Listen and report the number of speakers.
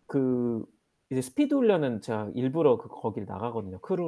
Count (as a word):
one